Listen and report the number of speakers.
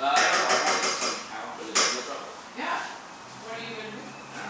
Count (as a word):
two